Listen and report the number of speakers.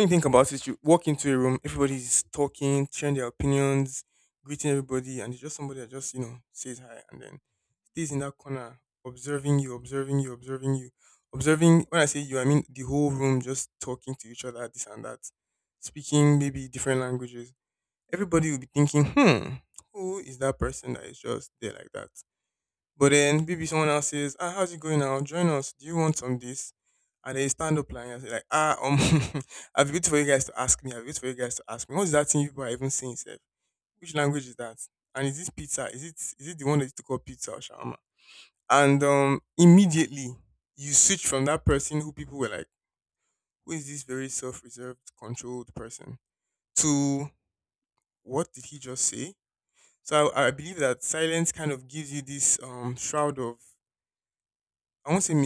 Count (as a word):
one